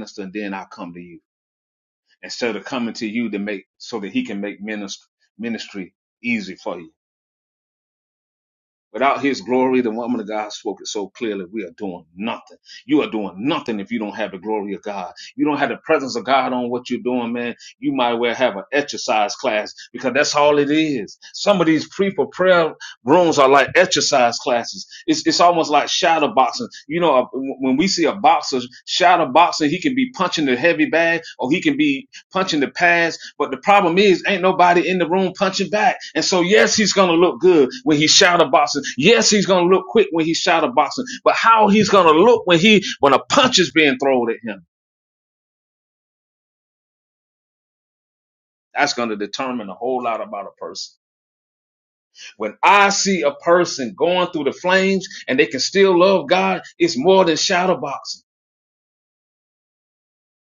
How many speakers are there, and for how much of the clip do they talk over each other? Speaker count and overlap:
one, no overlap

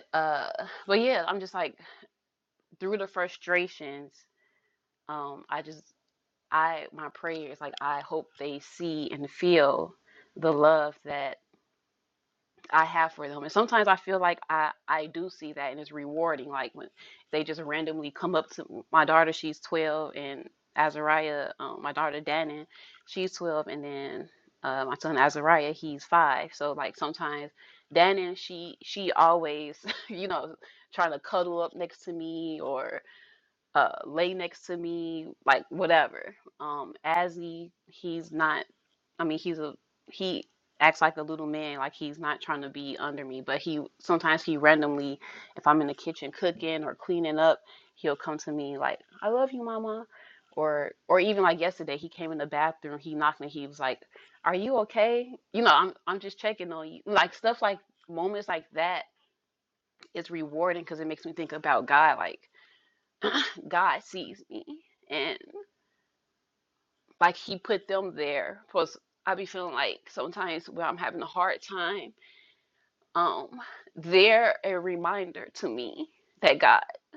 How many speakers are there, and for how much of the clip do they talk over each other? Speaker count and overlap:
one, no overlap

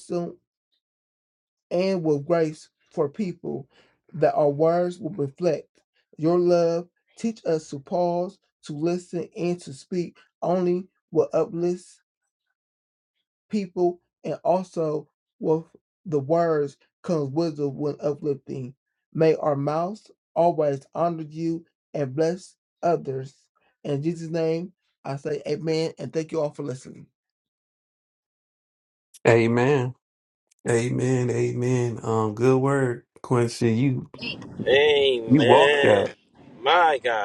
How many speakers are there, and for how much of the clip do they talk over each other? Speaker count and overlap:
three, about 1%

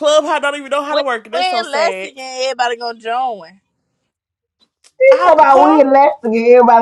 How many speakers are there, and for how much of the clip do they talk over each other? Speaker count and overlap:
three, about 28%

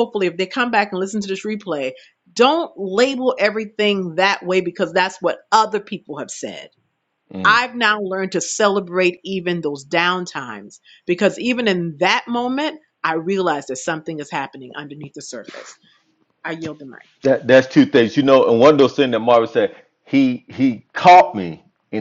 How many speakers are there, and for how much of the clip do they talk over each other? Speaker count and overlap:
two, about 1%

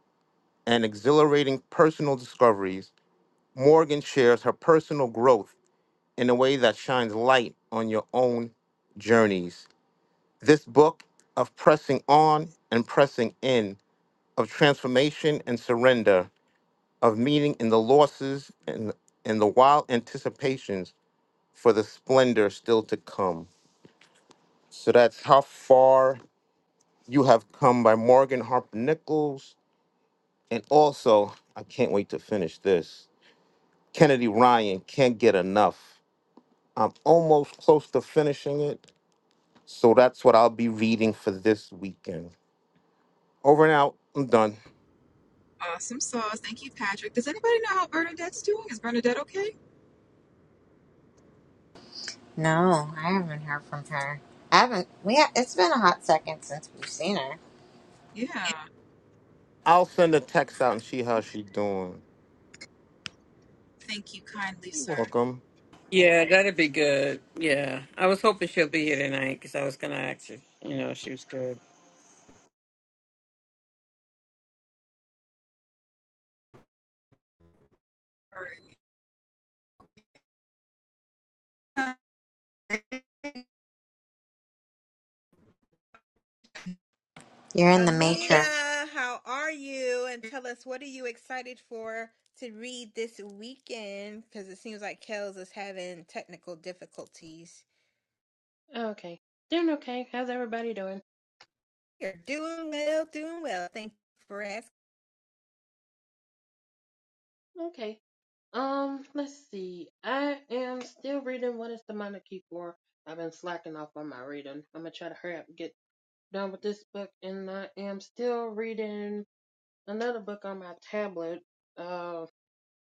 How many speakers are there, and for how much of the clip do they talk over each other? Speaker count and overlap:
six, about 1%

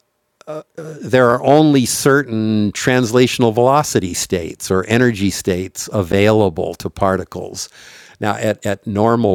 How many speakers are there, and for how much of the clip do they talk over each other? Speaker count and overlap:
one, no overlap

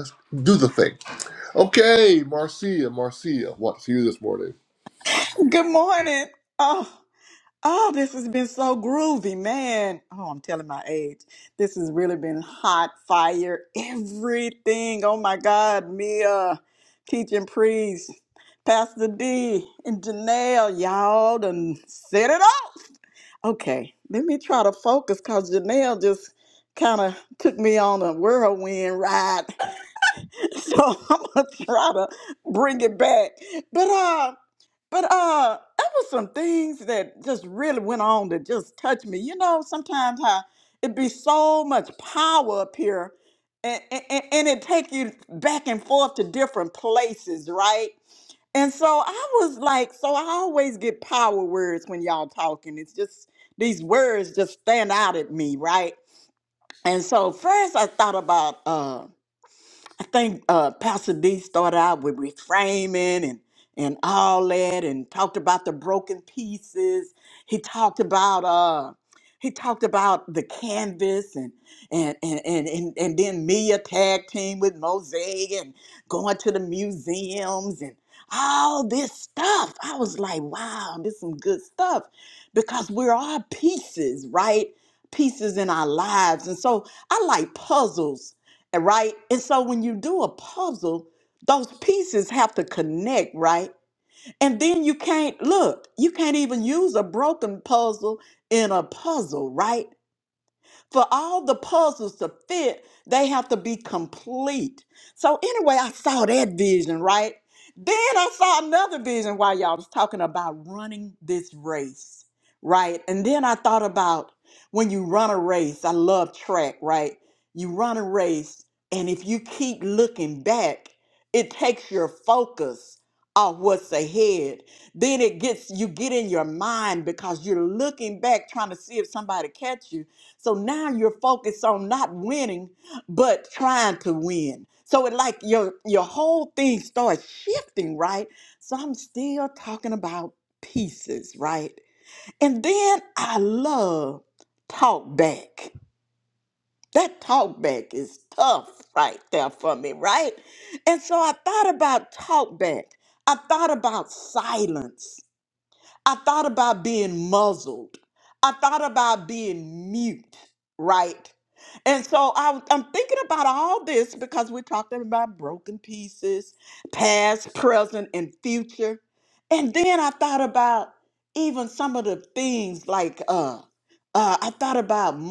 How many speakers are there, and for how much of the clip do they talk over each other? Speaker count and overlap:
two, no overlap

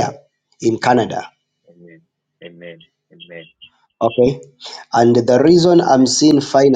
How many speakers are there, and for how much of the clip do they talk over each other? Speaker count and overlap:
two, about 4%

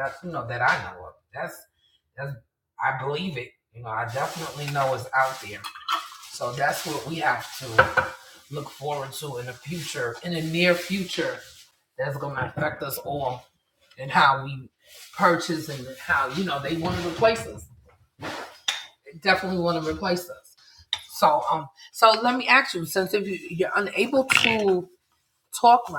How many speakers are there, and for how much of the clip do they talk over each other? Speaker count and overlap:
one, no overlap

